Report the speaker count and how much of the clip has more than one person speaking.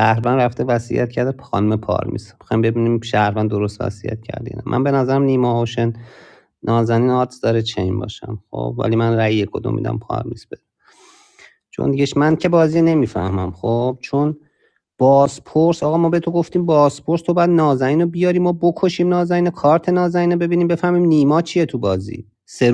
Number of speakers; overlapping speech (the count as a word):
one, no overlap